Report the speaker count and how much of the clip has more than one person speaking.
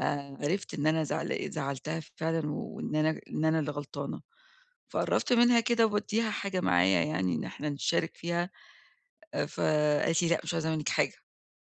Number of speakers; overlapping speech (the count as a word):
one, no overlap